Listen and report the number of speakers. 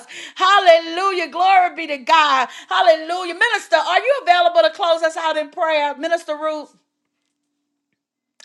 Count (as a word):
one